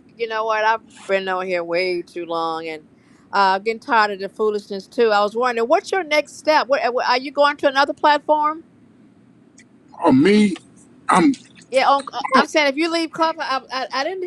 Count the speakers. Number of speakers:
two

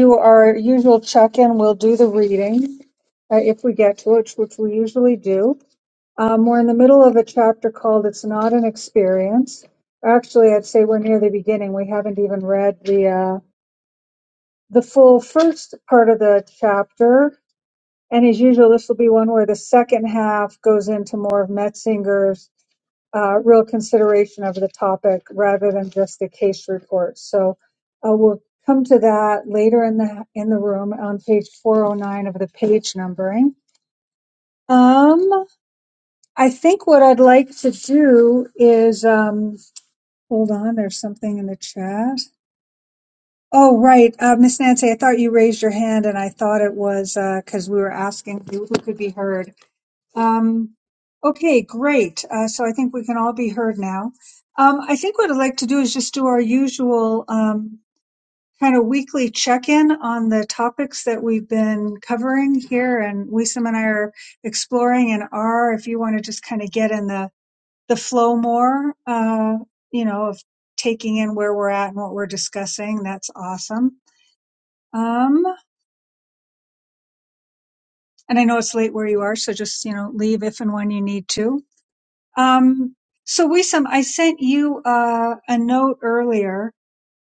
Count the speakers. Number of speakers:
one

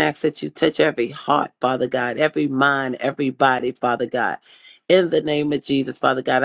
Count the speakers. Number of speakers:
one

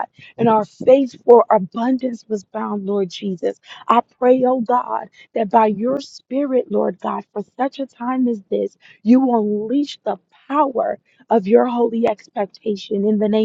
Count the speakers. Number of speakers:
one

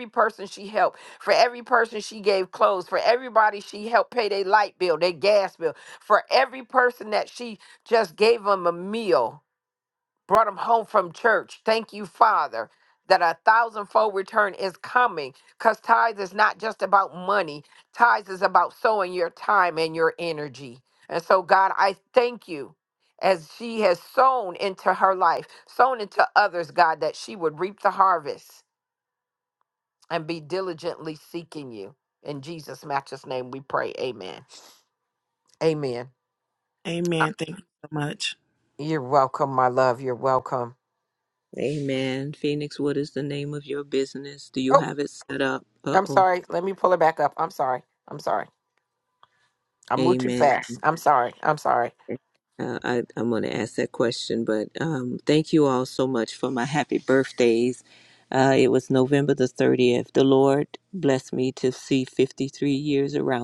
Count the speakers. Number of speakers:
three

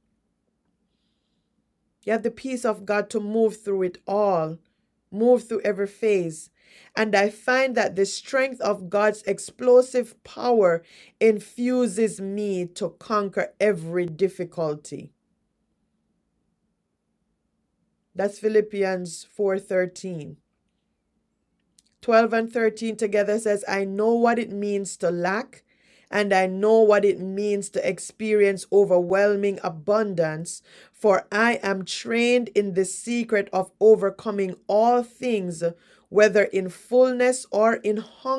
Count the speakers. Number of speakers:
one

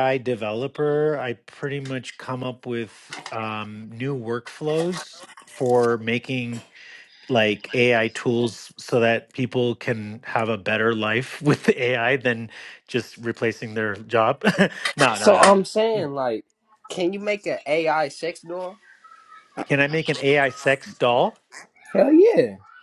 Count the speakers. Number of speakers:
two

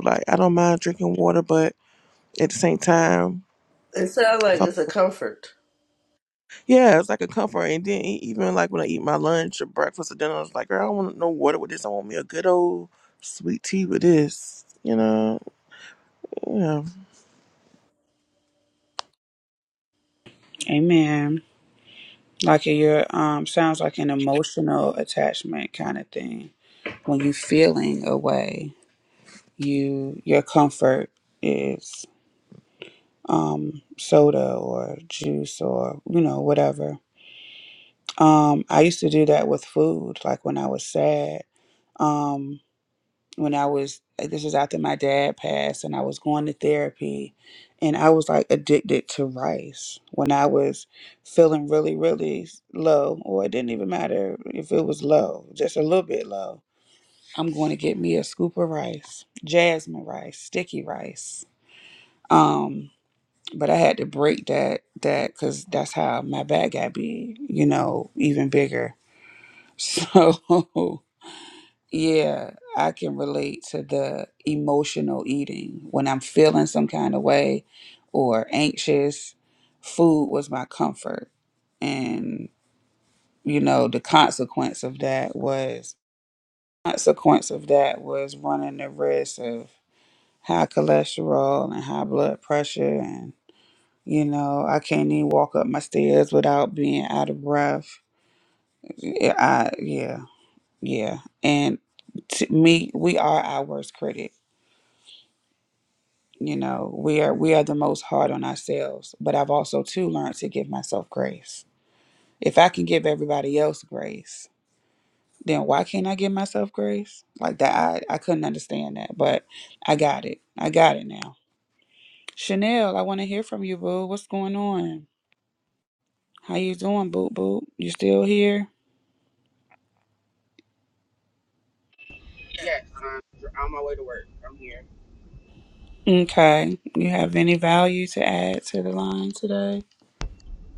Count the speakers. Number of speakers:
four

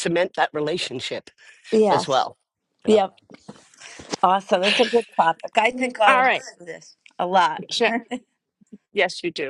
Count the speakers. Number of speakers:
three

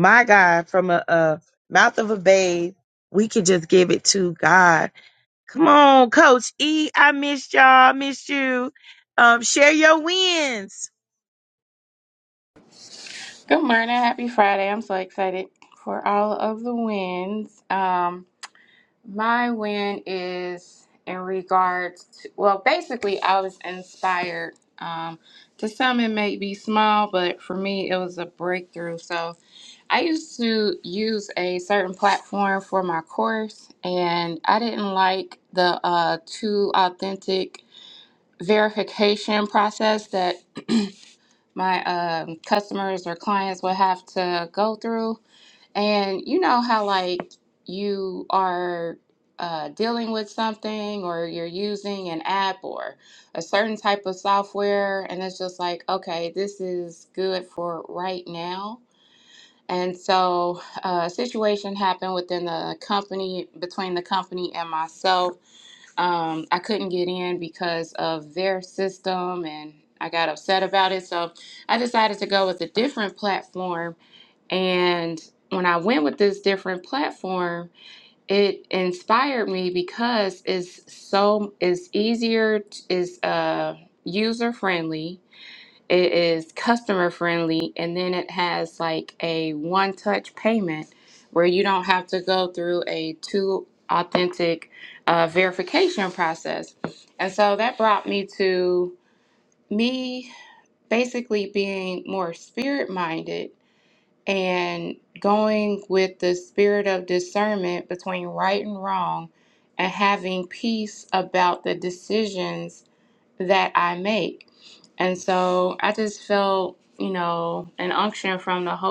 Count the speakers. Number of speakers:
two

